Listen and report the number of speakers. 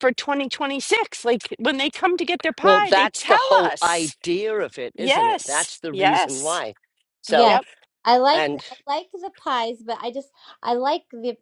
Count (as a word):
three